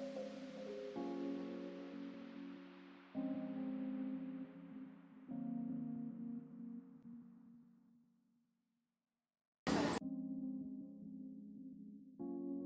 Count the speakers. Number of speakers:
0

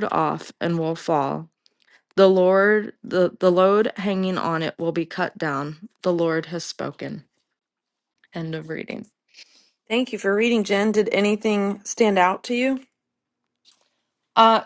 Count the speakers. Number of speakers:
2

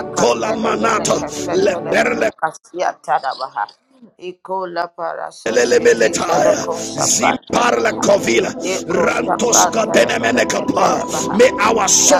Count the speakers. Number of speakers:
2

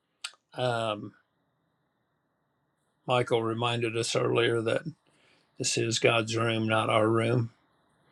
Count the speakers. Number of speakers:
1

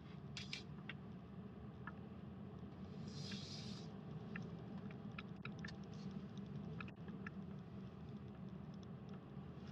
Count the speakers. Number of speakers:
0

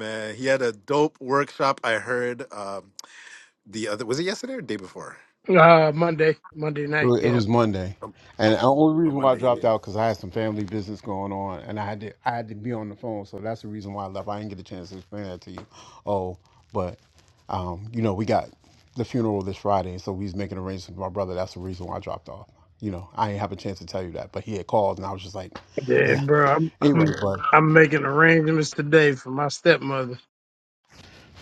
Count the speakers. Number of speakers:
3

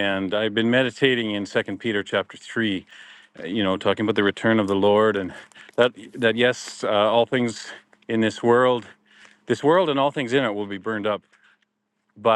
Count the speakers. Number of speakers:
1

